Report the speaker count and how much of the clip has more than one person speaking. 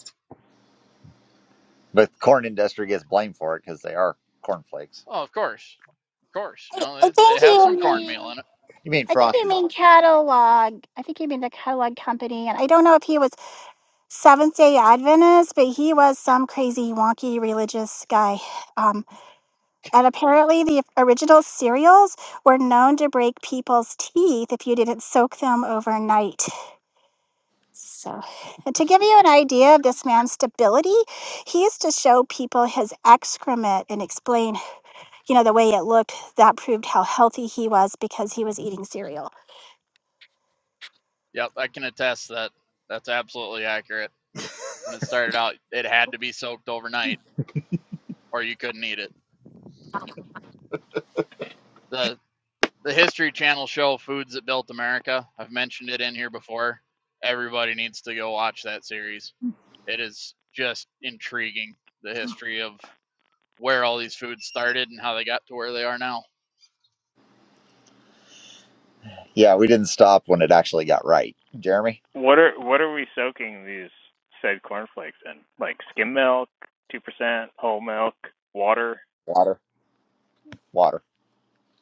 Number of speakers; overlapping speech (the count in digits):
4, about 2%